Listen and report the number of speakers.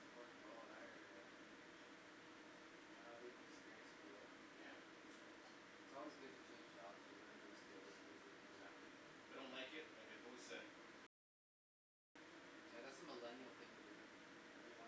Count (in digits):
2